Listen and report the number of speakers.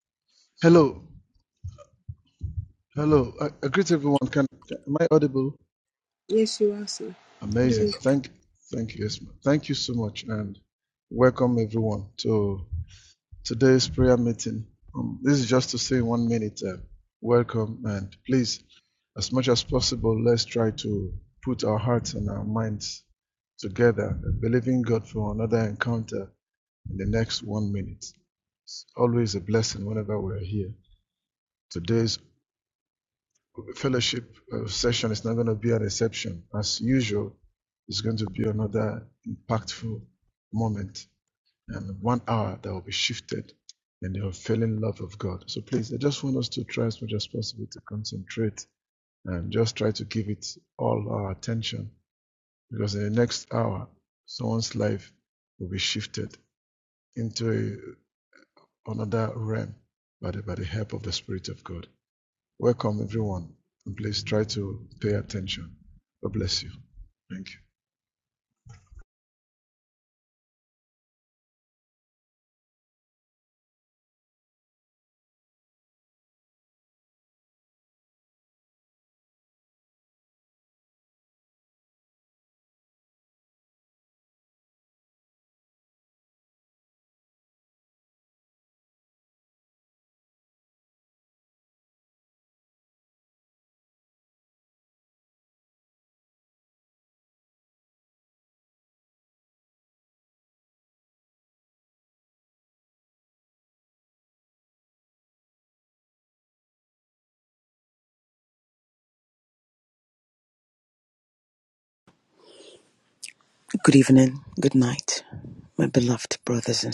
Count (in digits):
3